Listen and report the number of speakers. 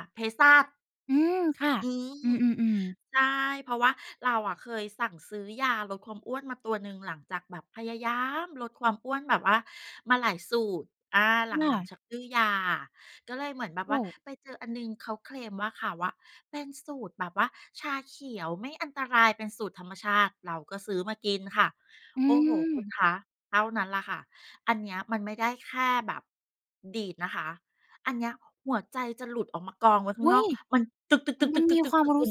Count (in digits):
2